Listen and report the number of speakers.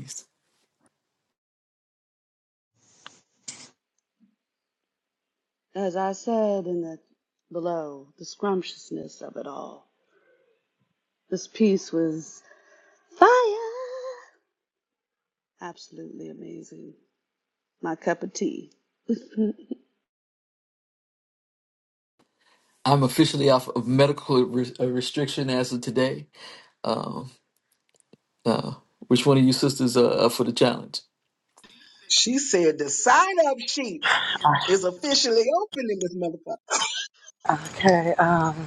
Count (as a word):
four